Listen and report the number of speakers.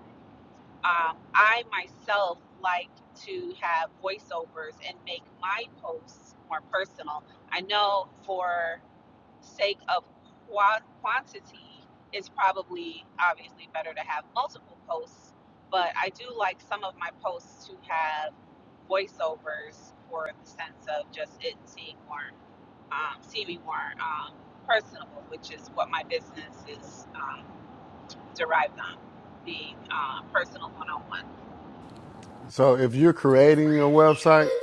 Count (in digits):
2